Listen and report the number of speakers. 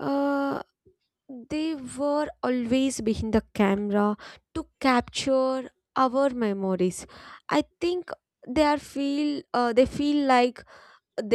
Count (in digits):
1